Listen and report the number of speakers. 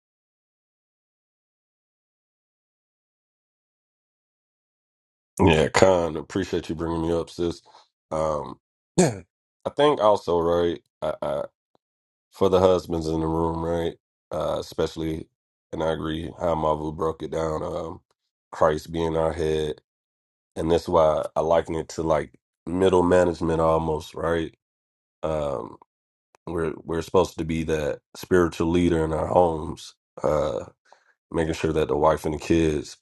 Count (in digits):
1